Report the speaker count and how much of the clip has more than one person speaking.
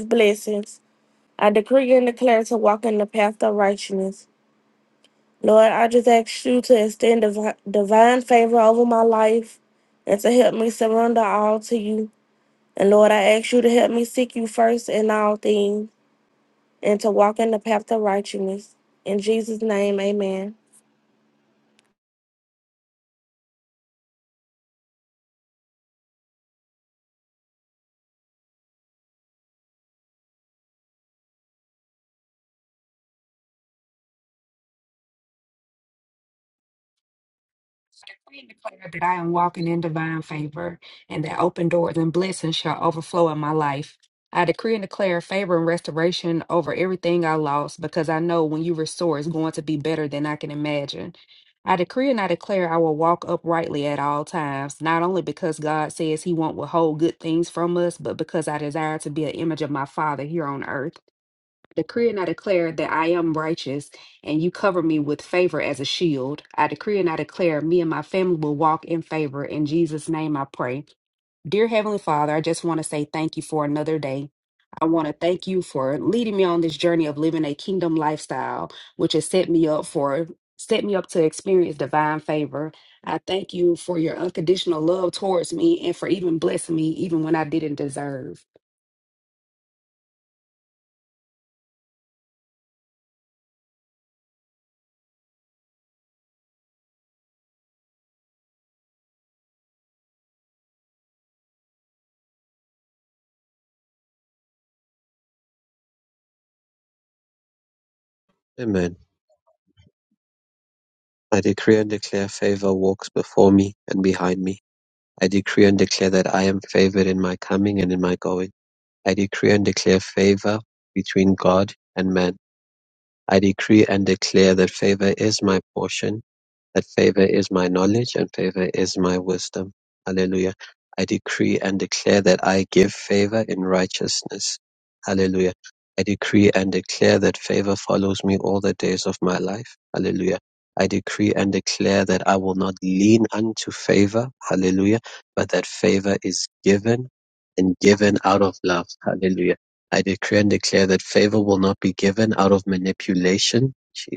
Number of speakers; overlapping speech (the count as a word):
three, no overlap